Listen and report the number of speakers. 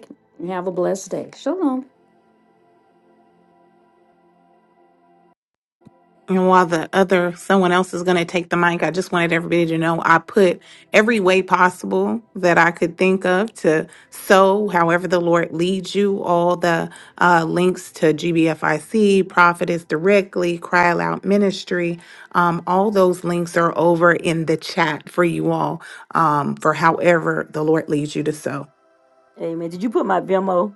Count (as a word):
three